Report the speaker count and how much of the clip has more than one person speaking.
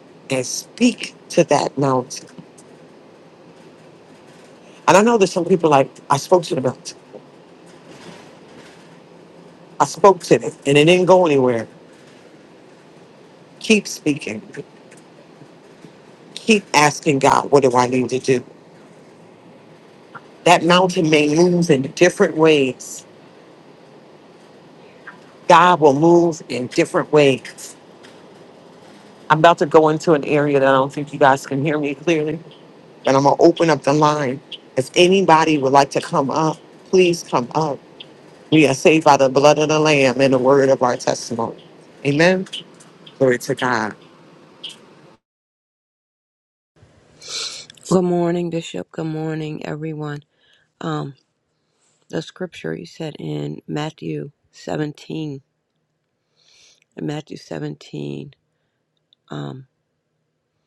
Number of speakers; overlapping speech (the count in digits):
2, no overlap